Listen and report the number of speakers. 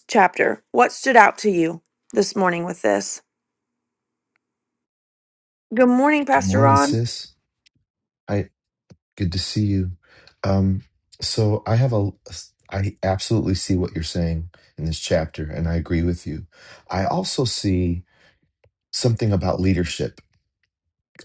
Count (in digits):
2